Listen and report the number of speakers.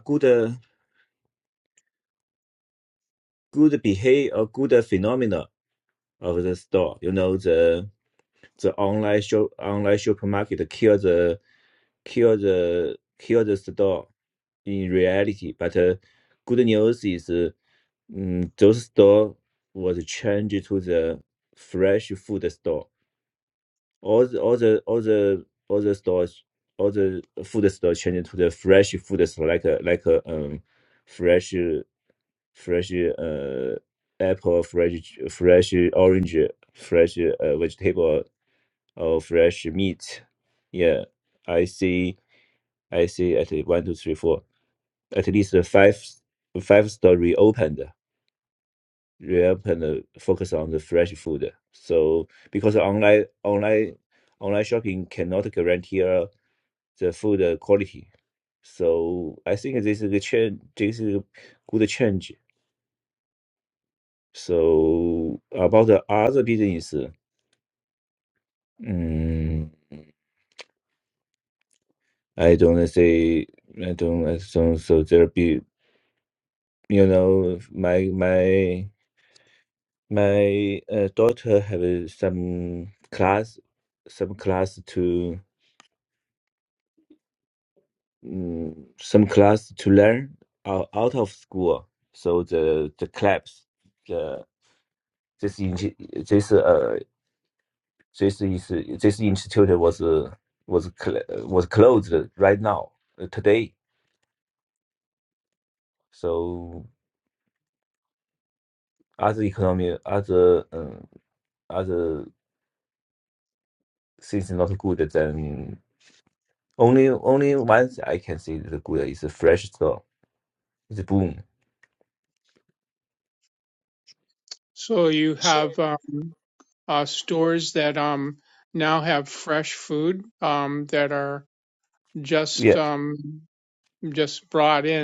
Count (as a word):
two